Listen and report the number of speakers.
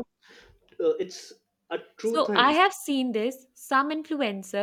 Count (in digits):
2